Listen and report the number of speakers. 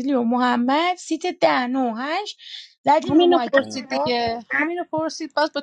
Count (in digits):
2